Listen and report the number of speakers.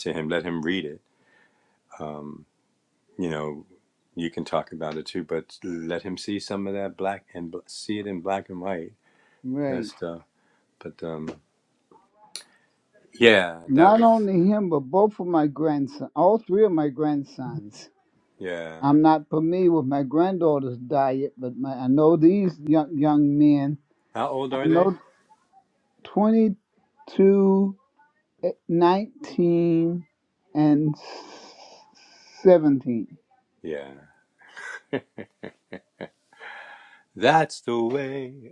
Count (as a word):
two